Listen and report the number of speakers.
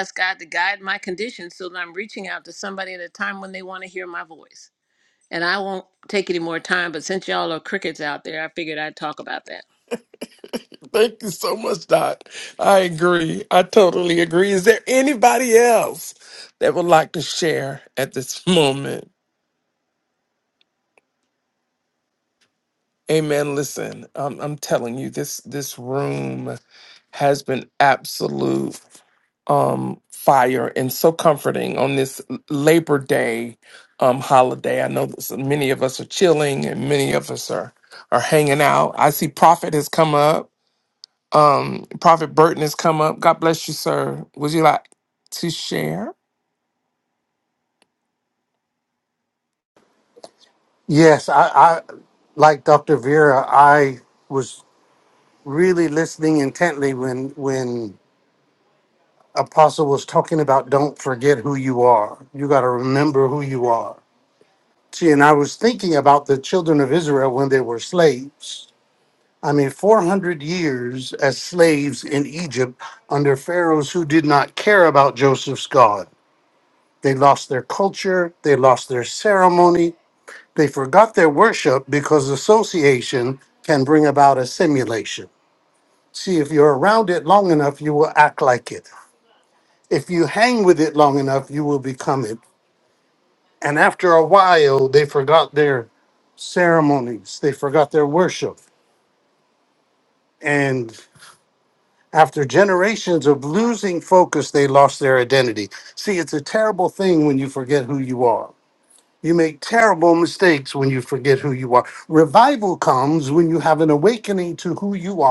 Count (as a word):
three